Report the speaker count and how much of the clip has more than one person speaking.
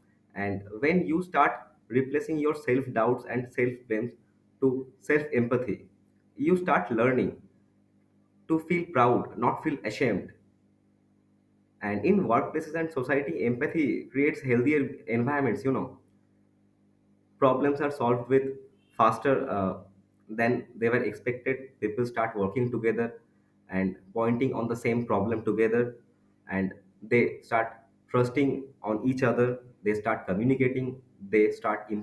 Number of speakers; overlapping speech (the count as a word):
one, no overlap